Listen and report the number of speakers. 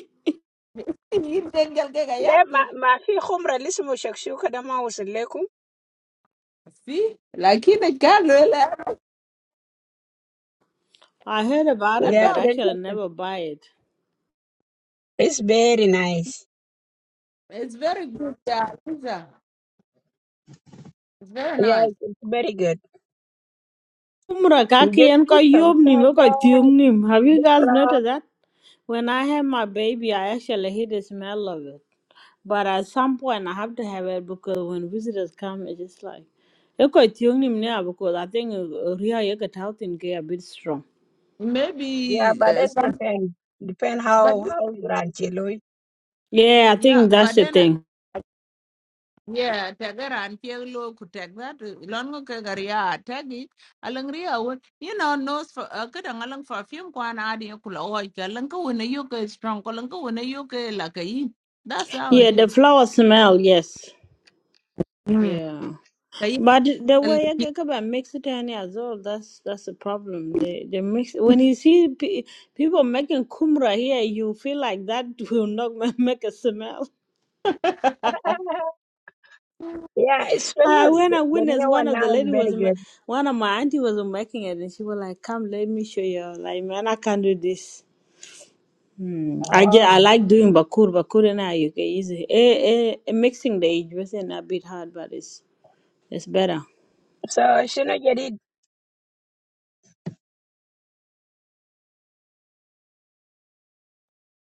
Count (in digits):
3